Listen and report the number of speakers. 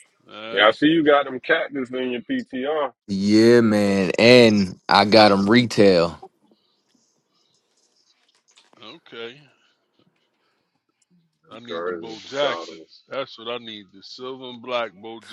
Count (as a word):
three